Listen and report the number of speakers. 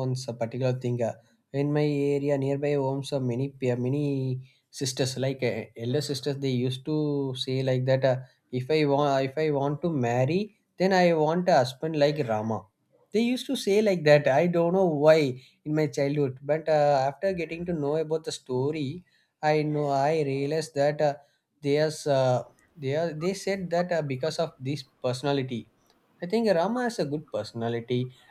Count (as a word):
one